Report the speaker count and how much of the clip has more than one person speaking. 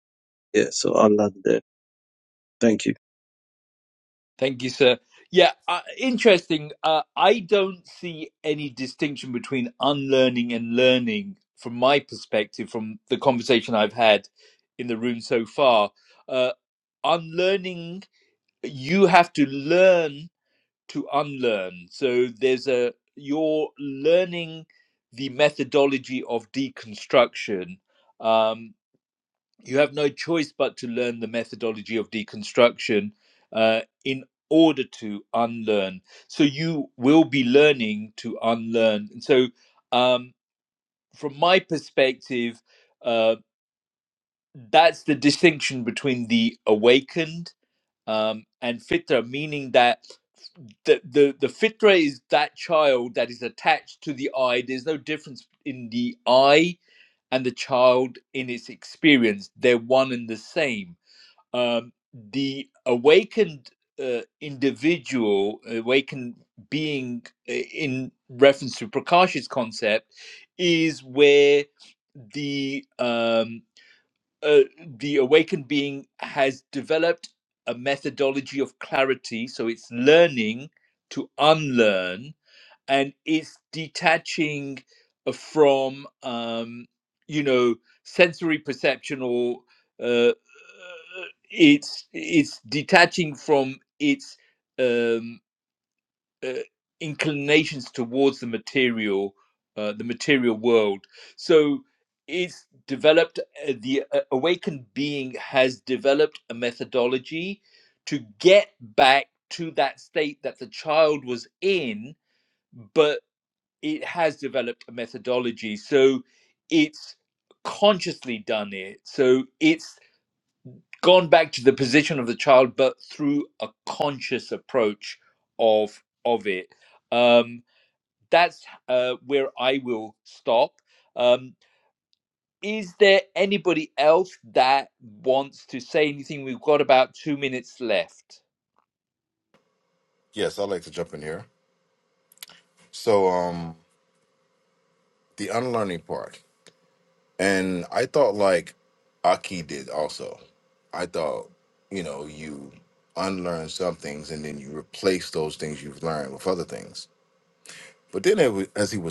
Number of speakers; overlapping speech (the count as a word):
three, no overlap